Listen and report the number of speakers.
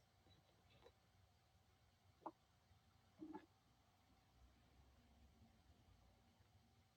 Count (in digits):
0